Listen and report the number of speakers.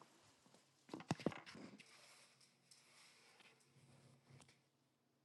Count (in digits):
0